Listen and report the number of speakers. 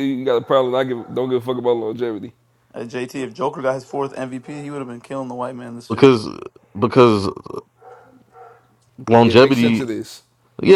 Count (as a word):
three